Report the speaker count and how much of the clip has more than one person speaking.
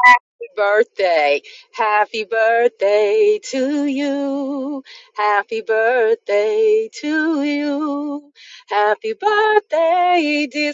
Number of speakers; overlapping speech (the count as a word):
one, no overlap